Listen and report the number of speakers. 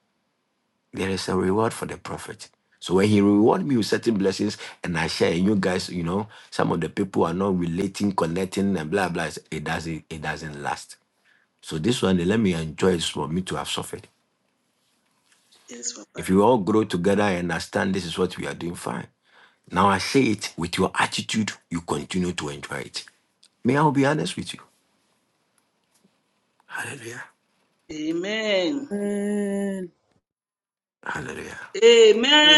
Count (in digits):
3